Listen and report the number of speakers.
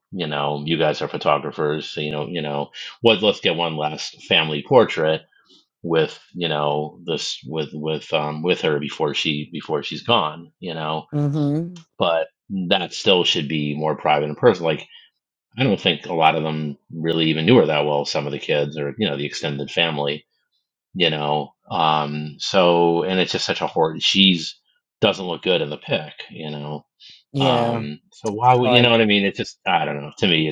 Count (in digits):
2